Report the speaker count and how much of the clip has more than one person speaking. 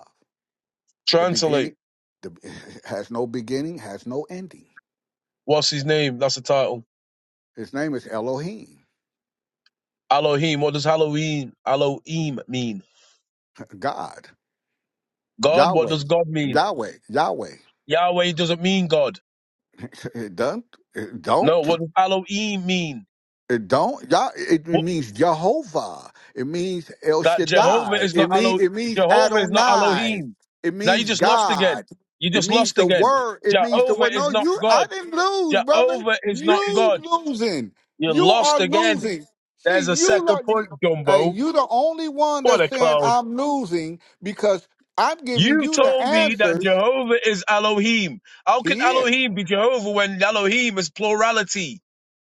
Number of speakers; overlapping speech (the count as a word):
two, about 25%